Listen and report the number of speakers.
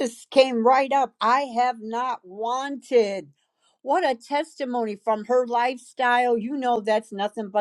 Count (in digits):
1